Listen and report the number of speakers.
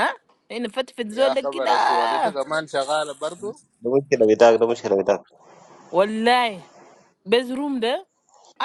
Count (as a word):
three